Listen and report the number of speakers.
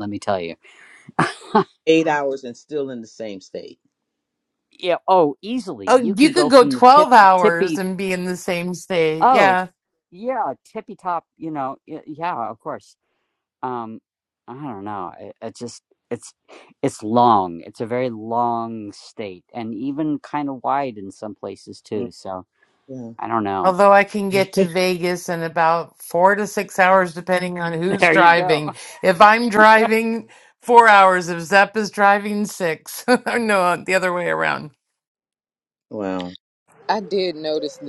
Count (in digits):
4